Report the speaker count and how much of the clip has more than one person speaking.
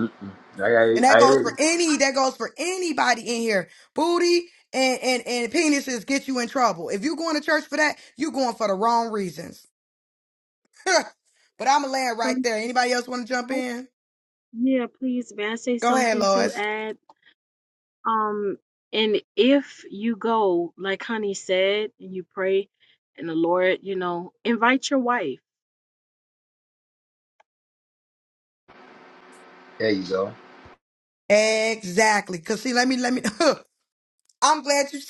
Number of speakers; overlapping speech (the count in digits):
3, about 5%